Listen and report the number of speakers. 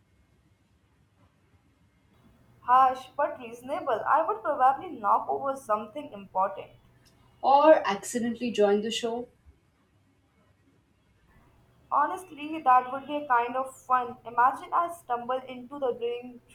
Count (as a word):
two